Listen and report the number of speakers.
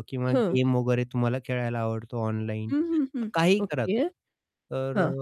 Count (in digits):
2